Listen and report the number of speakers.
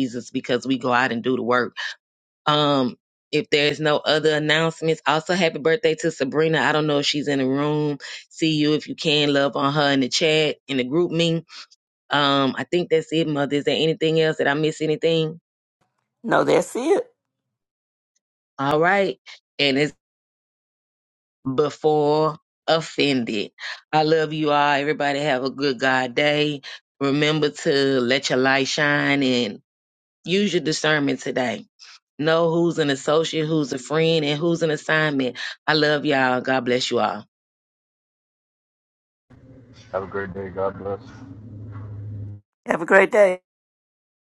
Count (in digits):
3